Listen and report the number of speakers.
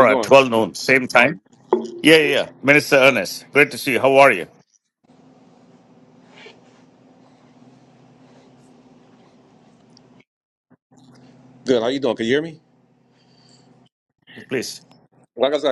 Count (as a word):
two